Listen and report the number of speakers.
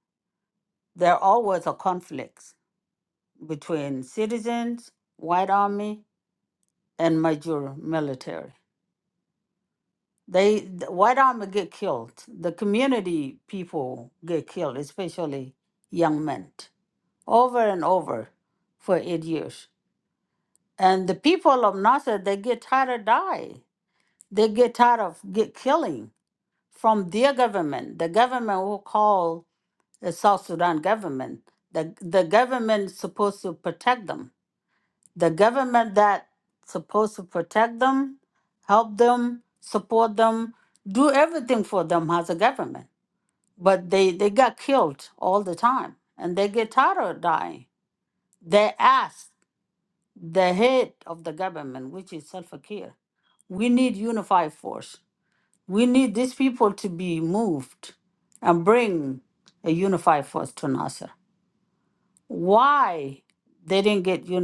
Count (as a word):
one